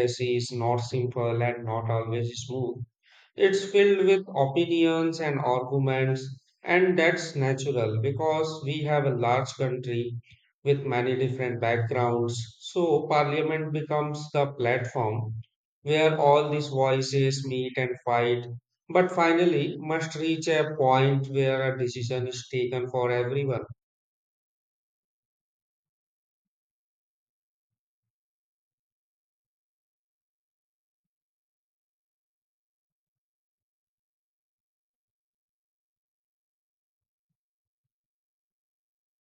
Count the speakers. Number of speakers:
1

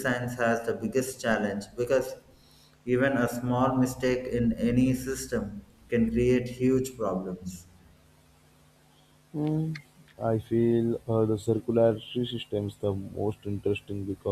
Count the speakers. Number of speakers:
2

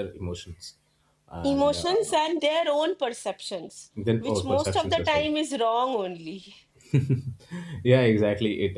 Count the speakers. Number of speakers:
2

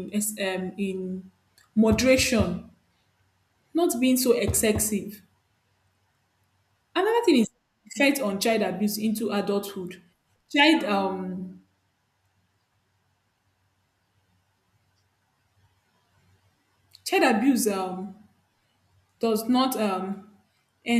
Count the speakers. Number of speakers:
1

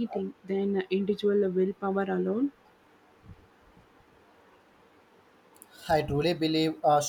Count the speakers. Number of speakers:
2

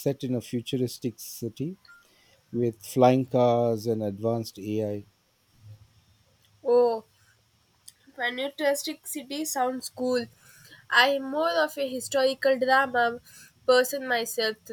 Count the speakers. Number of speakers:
2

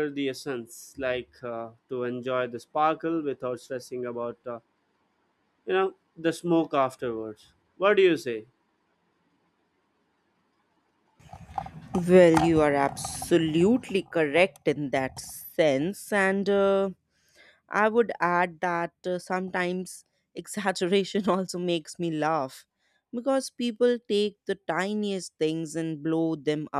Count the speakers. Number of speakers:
2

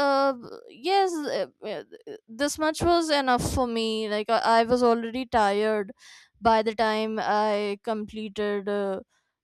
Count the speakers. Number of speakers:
1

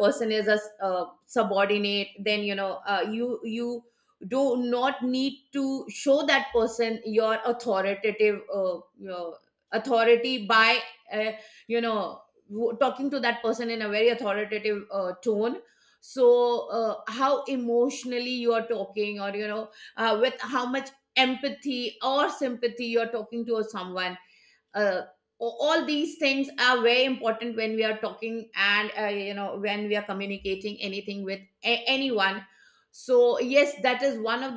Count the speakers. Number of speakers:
1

